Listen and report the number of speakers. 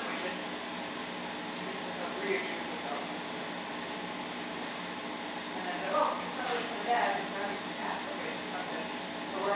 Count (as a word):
one